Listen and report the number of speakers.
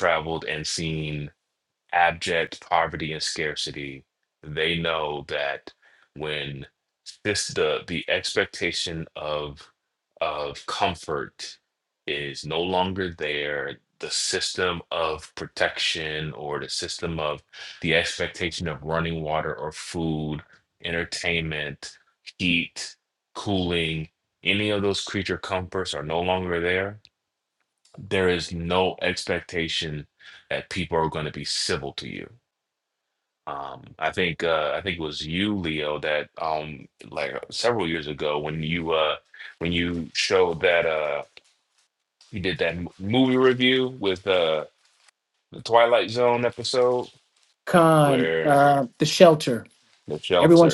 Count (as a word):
two